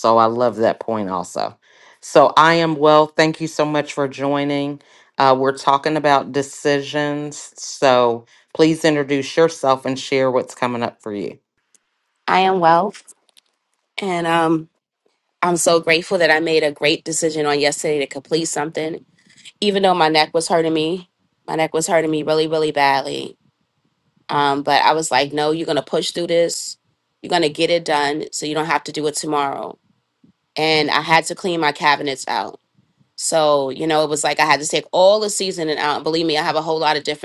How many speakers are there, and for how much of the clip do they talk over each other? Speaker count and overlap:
2, no overlap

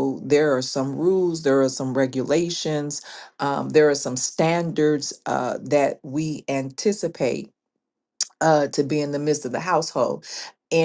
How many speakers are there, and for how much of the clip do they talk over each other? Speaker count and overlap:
1, no overlap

